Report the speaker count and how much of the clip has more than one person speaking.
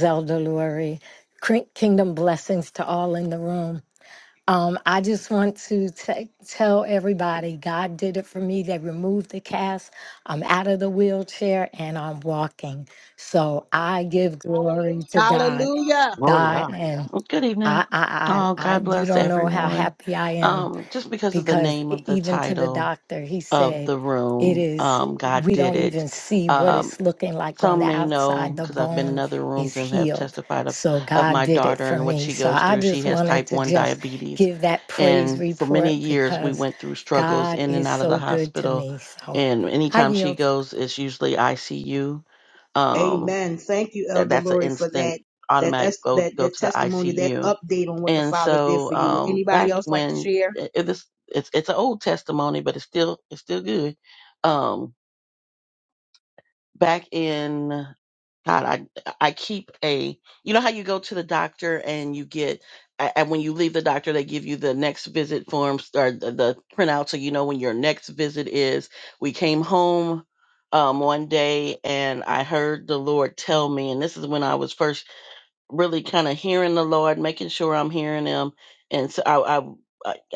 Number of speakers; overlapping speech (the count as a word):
three, about 28%